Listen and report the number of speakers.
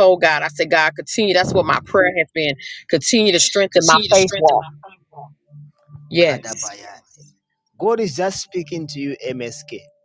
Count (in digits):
3